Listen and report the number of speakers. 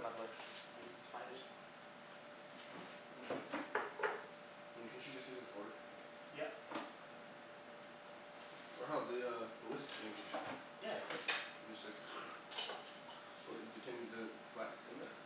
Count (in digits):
2